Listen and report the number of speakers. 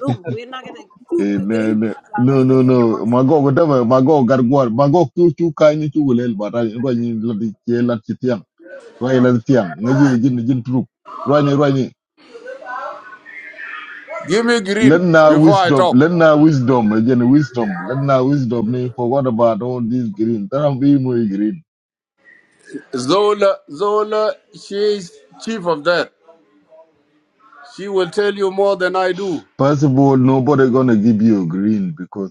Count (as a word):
three